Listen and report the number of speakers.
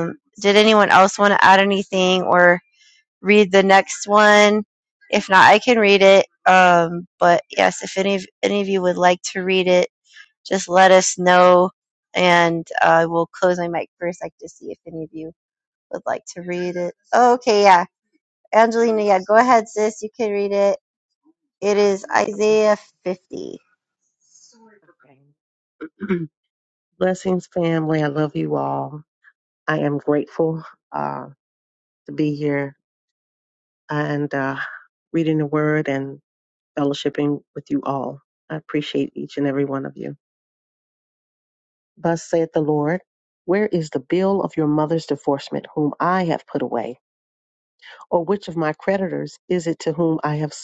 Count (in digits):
2